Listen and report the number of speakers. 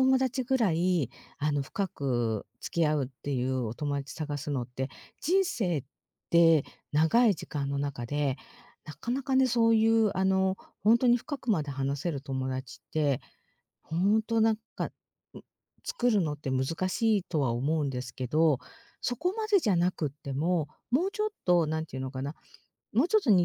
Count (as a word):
one